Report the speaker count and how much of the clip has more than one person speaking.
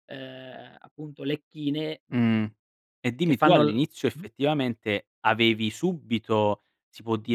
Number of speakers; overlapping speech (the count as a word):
two, about 7%